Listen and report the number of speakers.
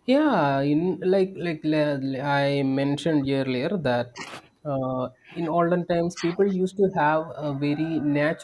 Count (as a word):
one